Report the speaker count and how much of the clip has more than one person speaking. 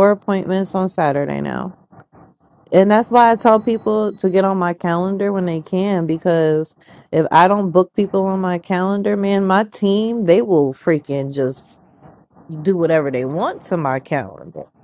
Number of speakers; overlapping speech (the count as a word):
one, no overlap